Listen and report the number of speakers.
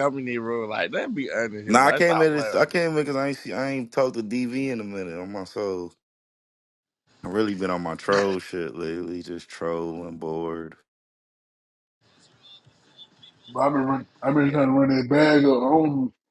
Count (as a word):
three